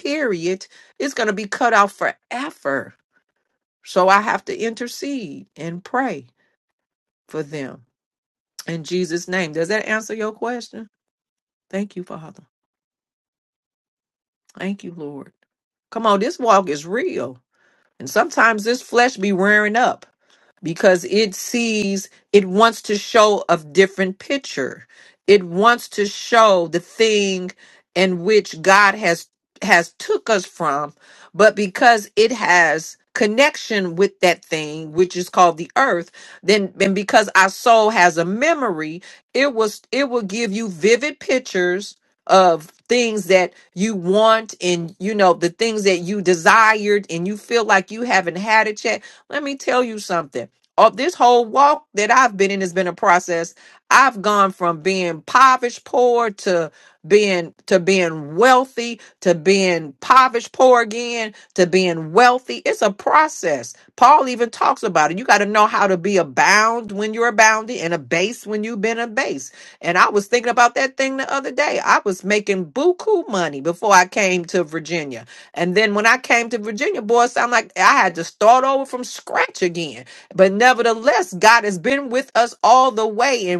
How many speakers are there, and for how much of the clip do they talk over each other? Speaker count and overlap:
1, no overlap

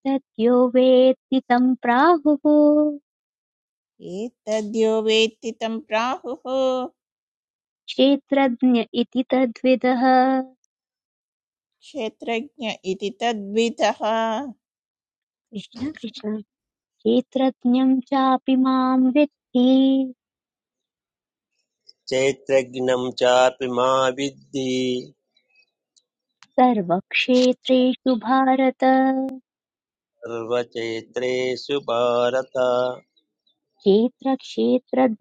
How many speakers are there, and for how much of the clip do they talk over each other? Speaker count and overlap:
3, no overlap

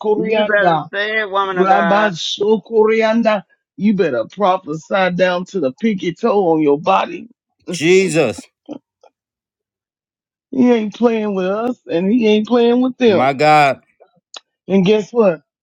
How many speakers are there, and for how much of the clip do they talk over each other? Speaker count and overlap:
3, about 9%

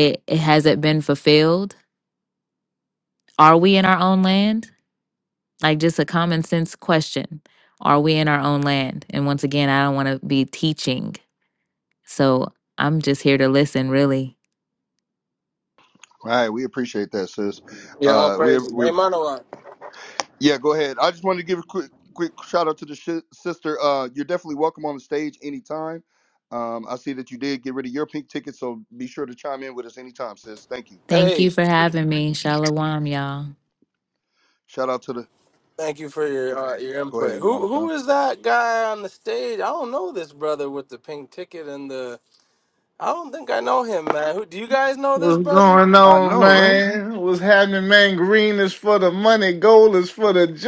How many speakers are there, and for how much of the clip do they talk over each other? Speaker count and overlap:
4, about 7%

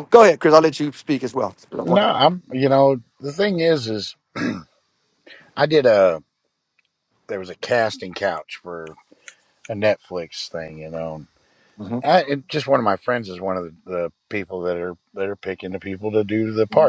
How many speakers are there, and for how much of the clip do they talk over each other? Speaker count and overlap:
2, about 2%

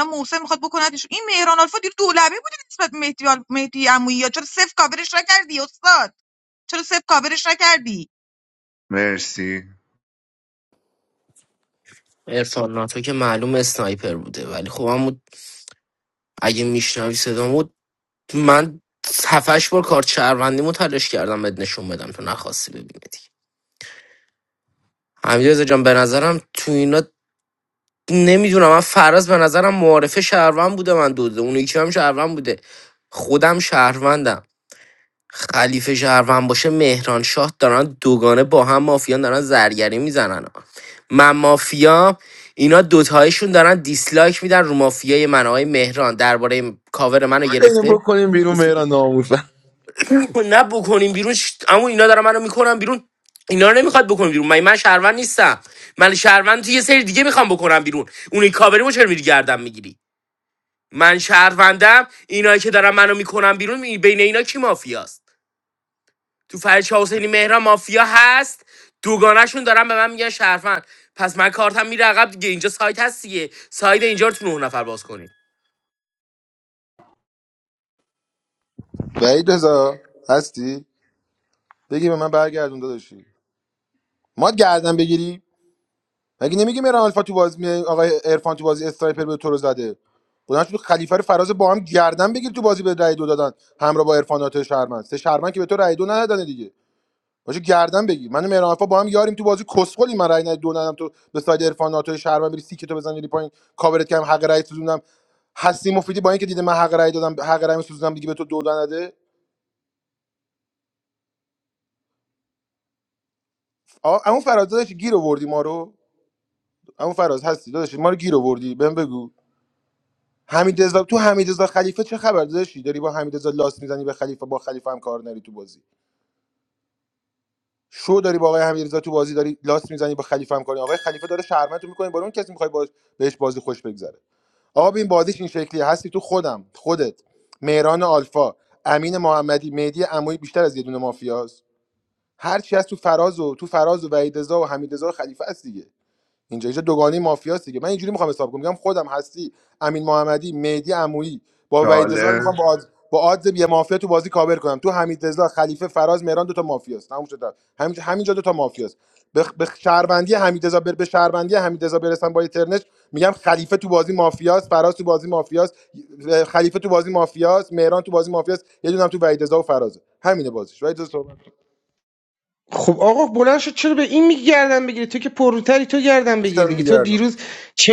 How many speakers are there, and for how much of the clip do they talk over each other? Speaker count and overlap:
5, about 1%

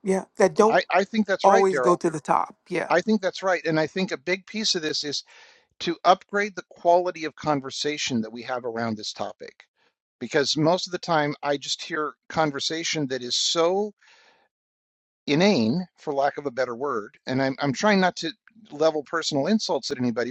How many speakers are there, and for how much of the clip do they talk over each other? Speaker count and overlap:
2, about 4%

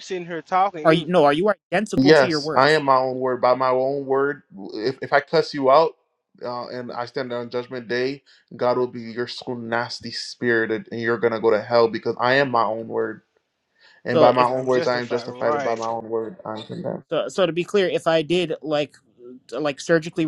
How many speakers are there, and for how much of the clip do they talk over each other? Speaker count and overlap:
3, about 13%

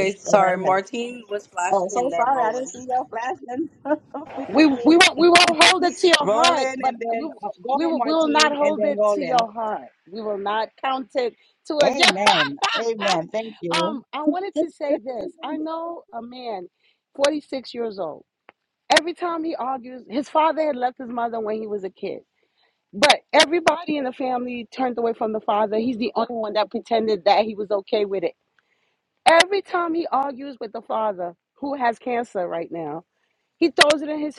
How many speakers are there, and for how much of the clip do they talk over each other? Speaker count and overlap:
3, about 16%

